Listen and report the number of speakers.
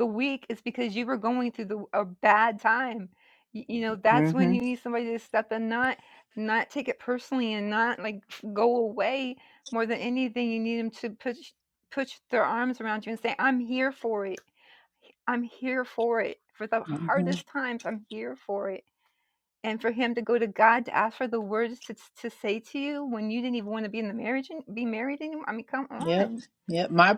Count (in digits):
2